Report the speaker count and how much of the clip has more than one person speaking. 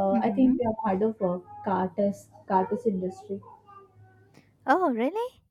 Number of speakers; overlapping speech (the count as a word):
two, about 9%